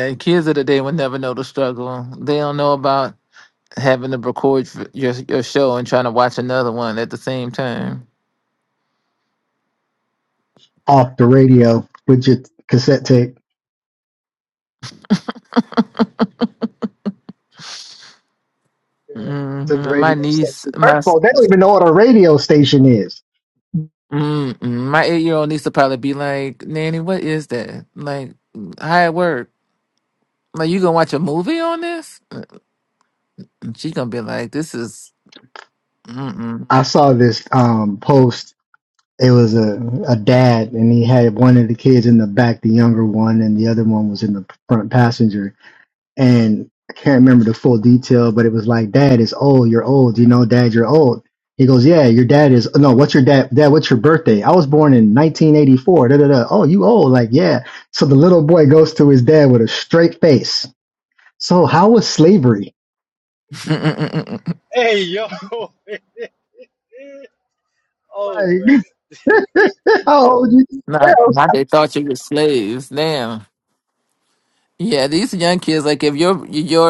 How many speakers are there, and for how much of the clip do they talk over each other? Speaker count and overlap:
3, about 2%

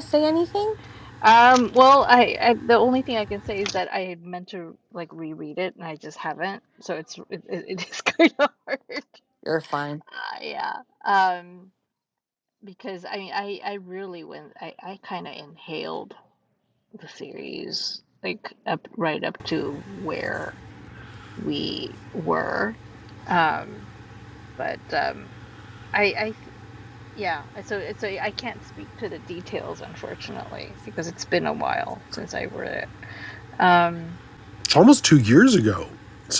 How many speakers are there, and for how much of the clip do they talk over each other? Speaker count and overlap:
3, no overlap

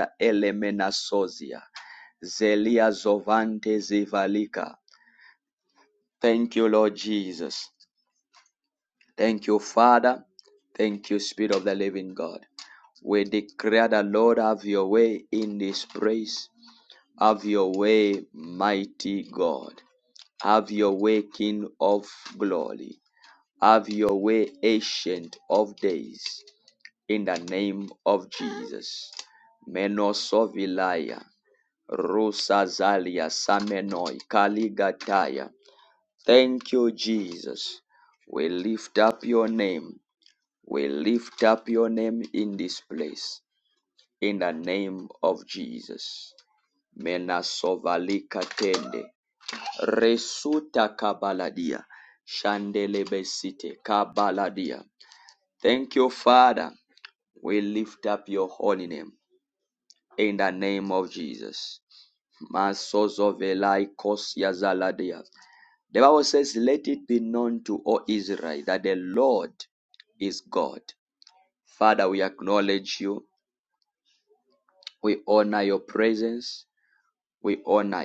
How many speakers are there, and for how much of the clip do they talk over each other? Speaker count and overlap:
1, no overlap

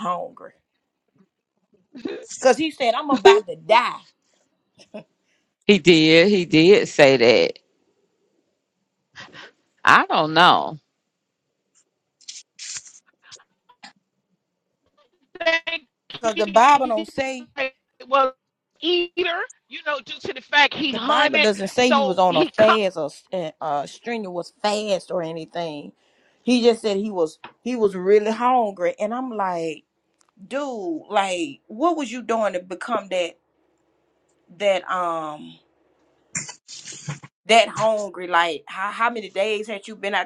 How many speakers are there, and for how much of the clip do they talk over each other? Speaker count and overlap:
3, about 5%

